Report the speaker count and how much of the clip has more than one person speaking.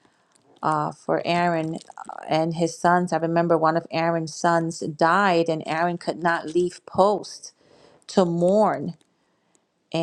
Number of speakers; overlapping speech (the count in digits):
1, no overlap